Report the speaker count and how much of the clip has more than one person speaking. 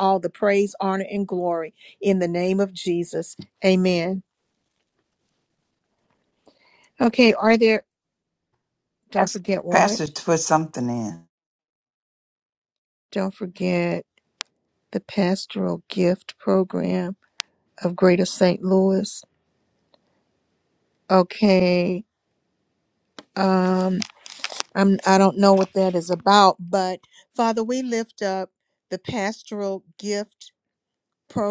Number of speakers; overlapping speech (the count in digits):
2, about 1%